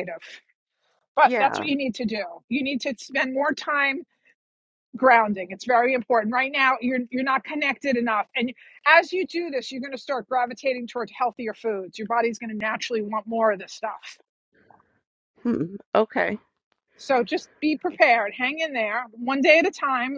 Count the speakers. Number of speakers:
2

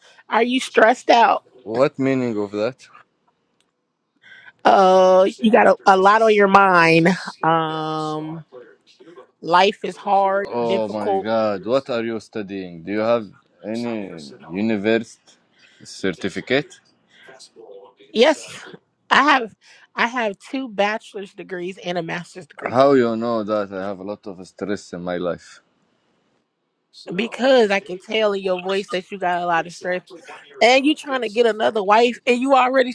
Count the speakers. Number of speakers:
2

